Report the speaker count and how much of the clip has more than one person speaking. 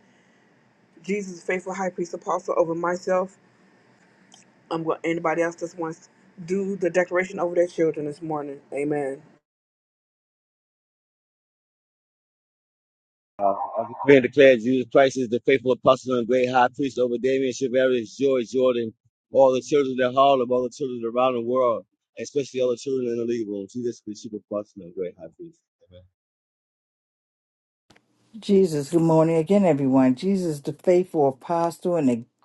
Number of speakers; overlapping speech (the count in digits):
3, no overlap